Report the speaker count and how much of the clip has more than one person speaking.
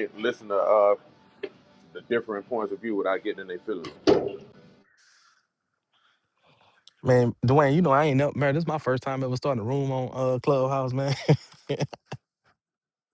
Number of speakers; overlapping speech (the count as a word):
two, no overlap